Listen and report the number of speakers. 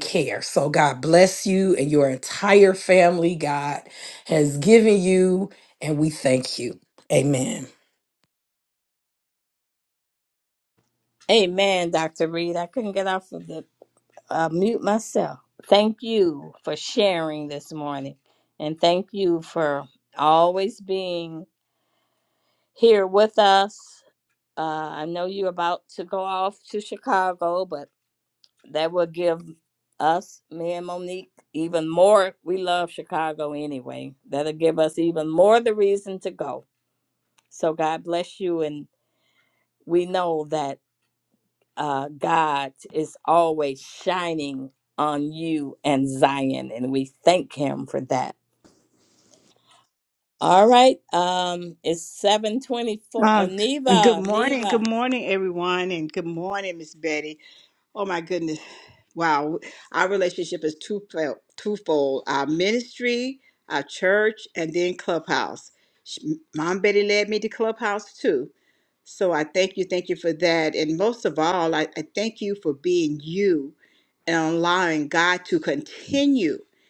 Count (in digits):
3